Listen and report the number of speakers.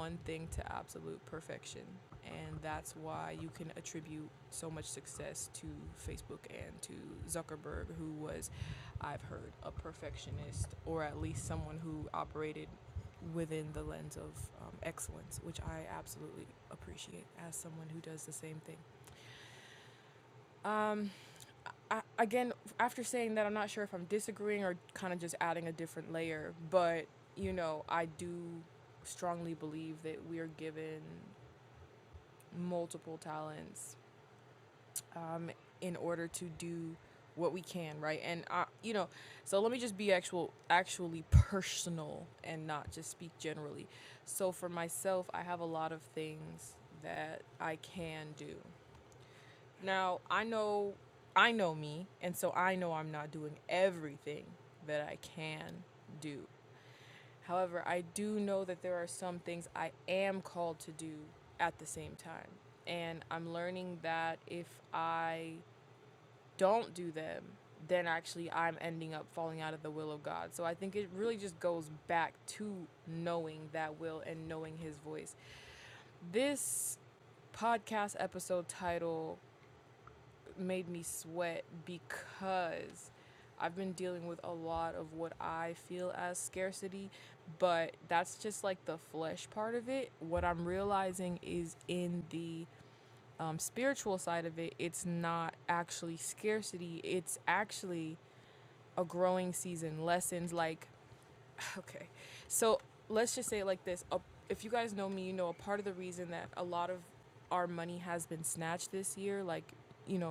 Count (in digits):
1